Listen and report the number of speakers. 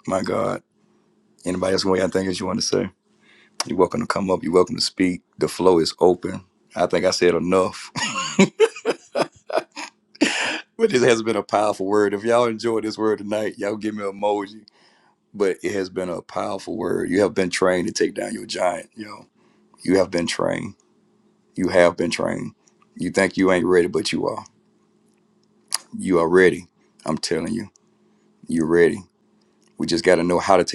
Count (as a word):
one